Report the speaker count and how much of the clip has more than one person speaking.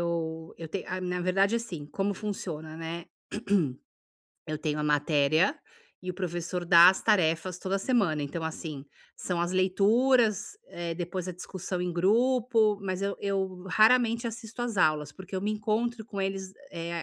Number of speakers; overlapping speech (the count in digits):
1, no overlap